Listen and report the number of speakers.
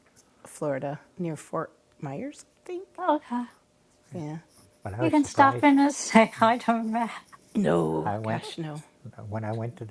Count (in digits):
3